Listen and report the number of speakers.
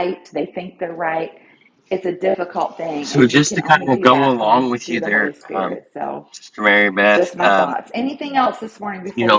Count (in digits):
2